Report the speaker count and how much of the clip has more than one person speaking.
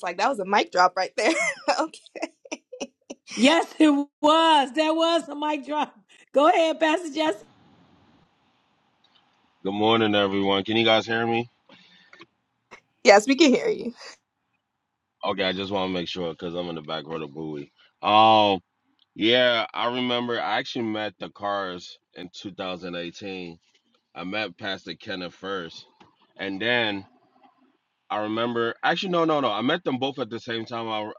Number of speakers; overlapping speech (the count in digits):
3, no overlap